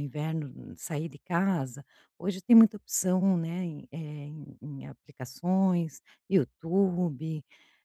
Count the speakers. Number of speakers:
1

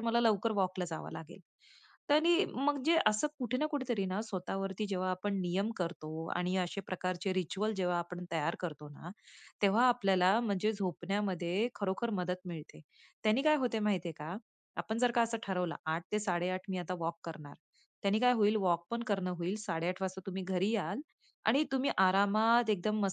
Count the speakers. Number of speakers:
1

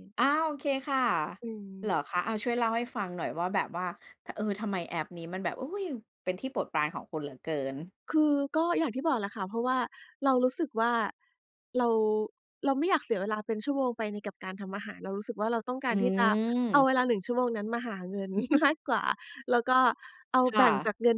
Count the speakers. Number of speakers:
2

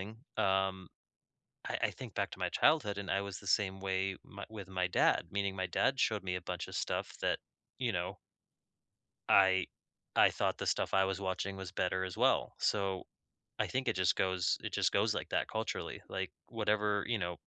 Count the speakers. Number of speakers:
1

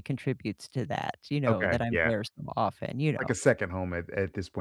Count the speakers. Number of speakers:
2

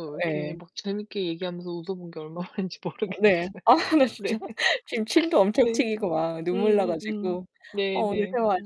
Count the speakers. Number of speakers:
2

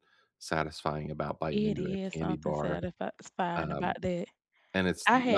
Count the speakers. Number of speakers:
2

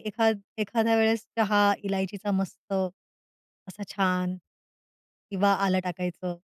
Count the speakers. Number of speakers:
1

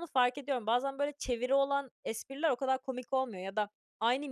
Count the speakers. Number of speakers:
1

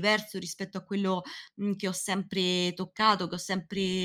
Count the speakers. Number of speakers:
1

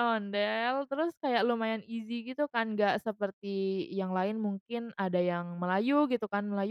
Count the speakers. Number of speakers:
1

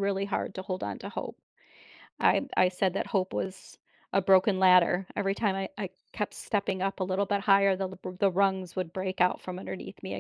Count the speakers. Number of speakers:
1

